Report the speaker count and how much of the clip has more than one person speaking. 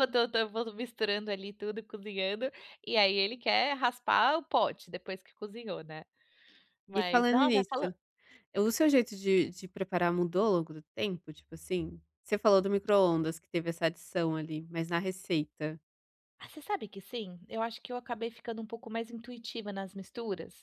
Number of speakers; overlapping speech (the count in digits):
2, about 5%